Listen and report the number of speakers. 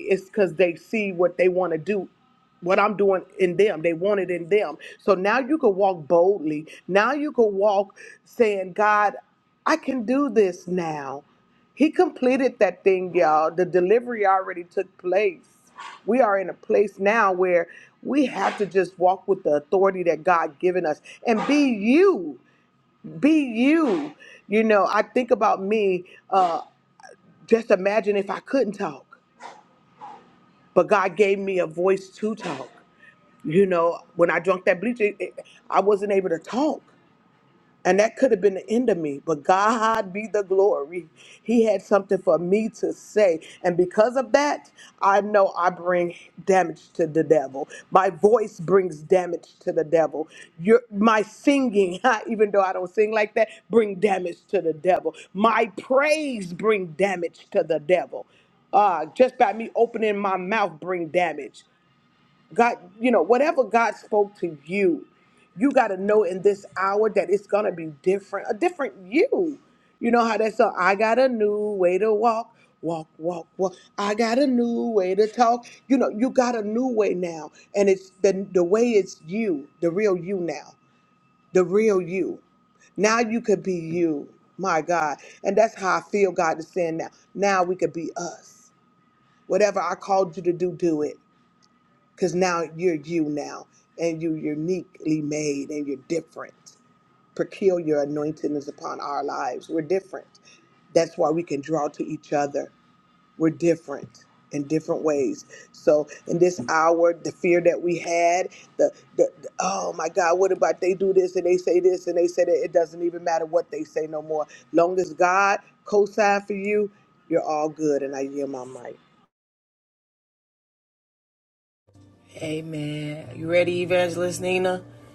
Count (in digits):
2